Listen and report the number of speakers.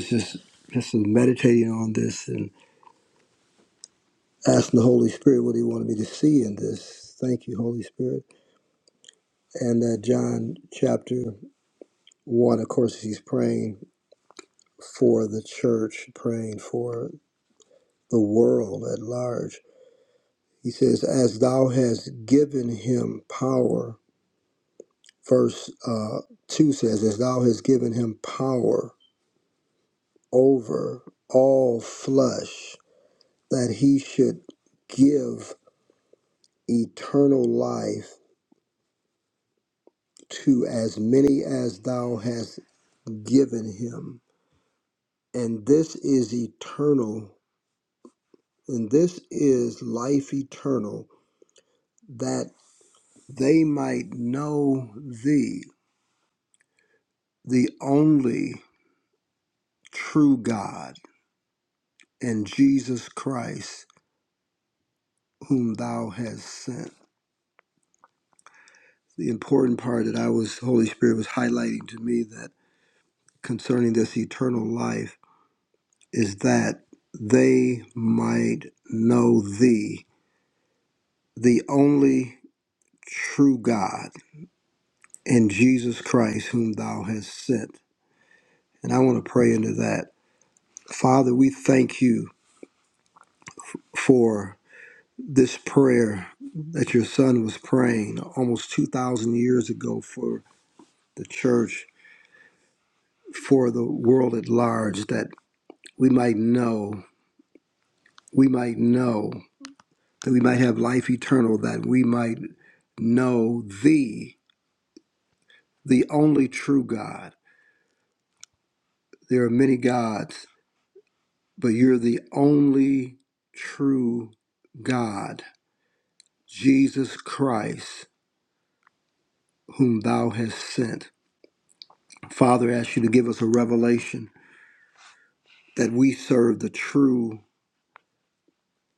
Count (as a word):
one